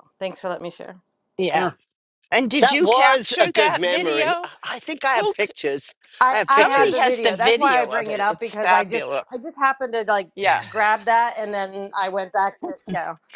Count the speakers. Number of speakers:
three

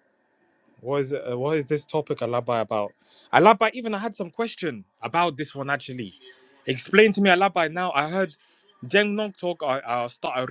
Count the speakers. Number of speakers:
one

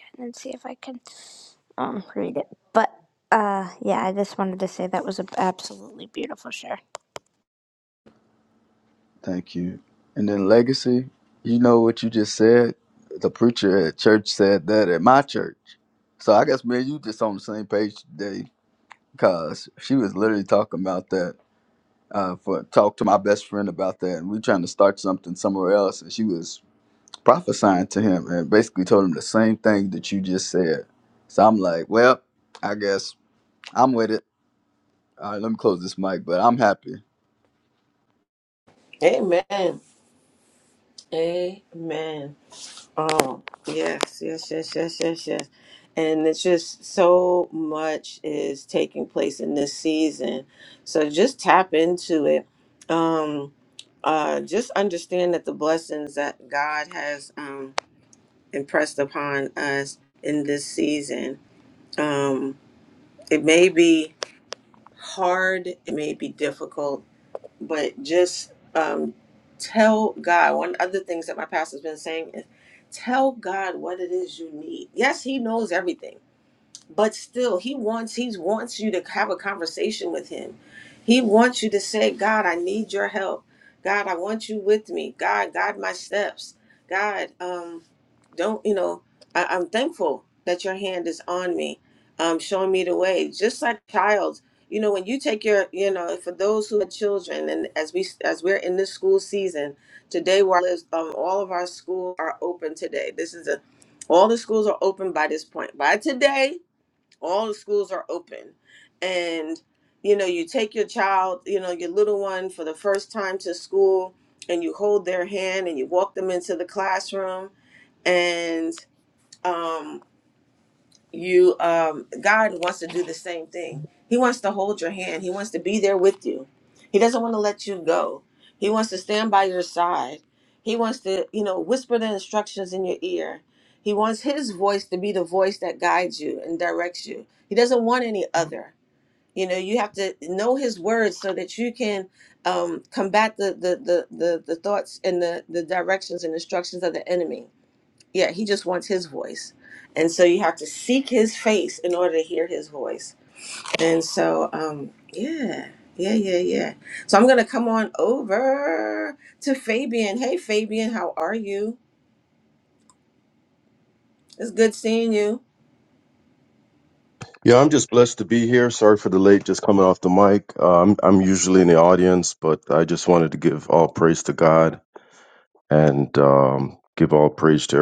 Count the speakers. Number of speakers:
four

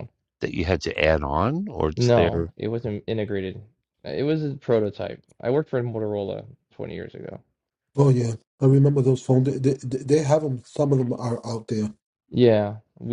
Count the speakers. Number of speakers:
three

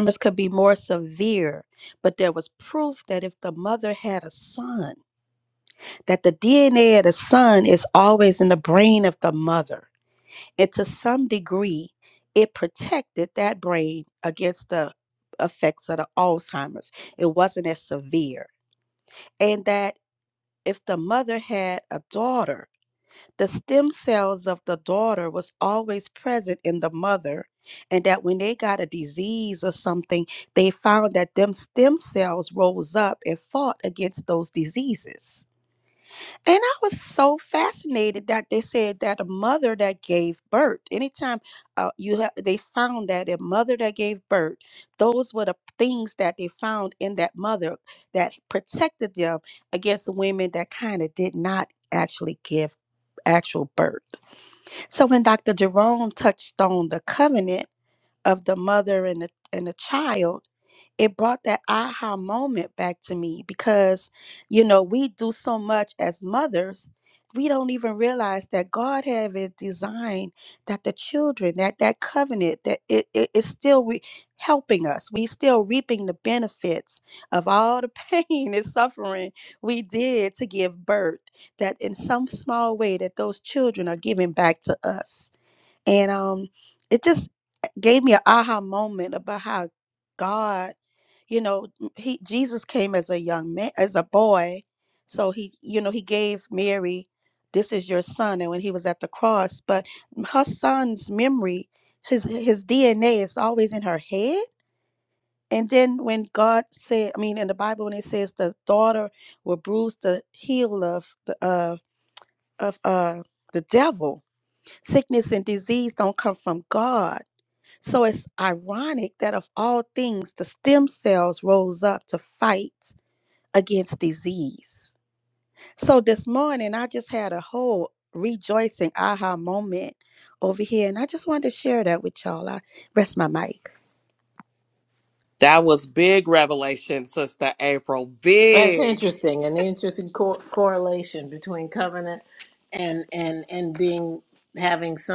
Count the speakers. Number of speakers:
three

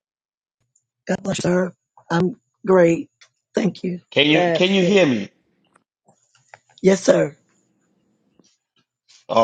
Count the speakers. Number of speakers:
two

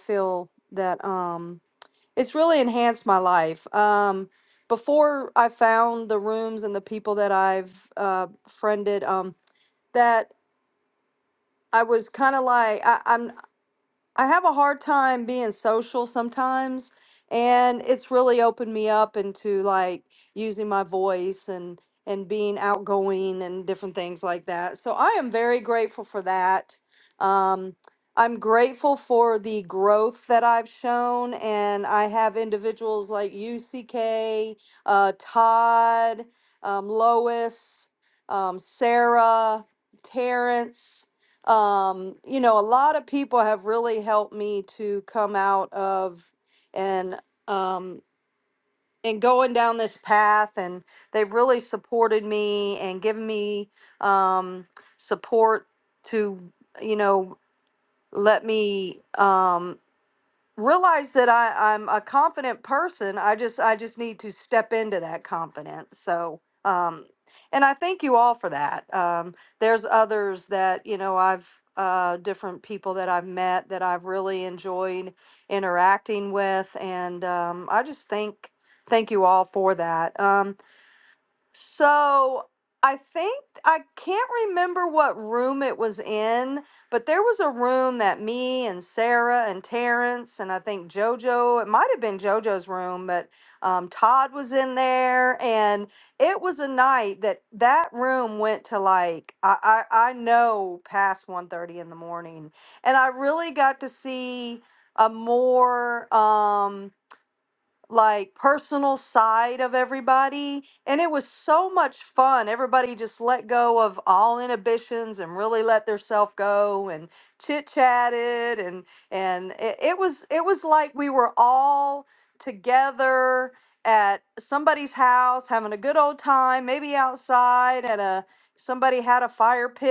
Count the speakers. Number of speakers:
one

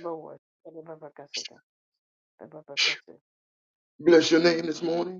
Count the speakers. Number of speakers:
two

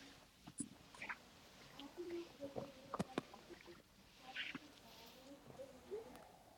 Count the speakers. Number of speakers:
zero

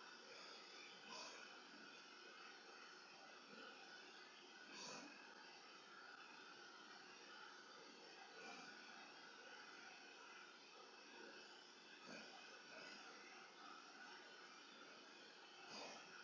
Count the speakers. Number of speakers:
zero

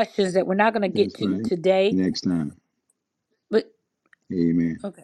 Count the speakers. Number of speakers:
two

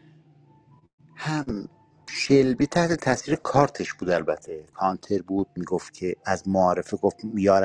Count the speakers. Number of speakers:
one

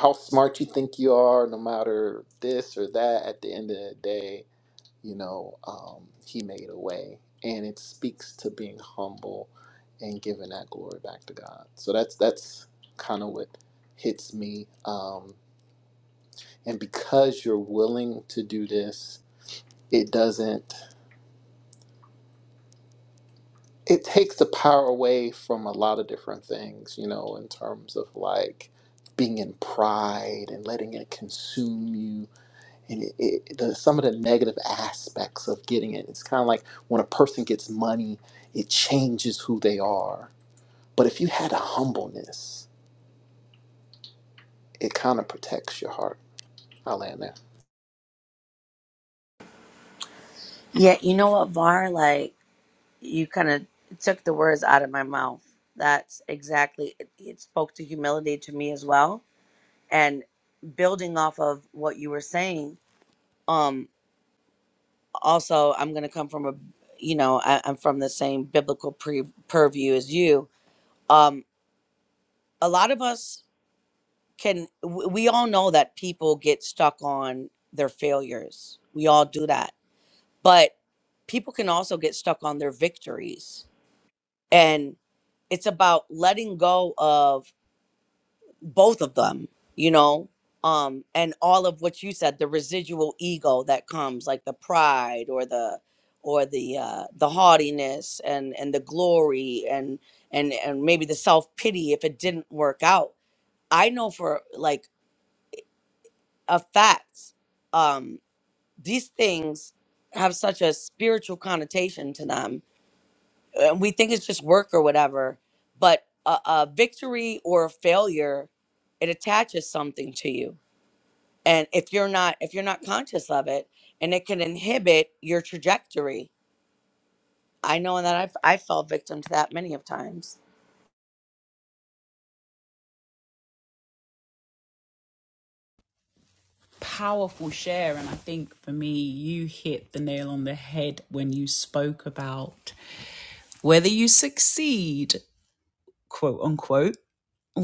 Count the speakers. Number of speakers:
three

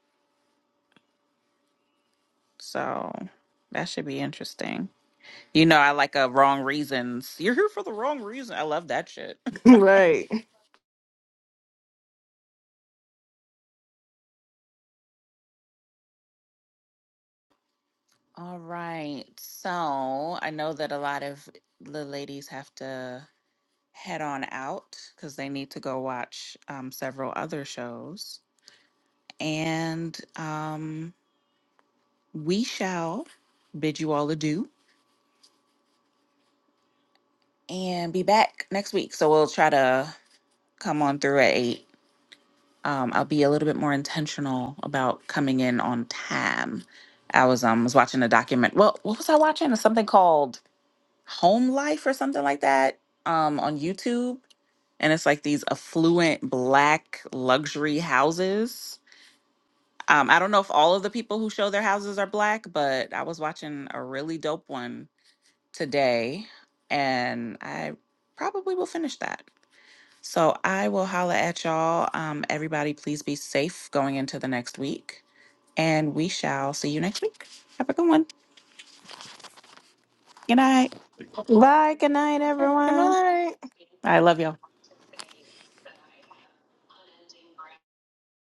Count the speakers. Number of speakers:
three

